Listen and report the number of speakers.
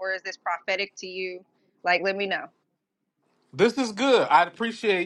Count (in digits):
2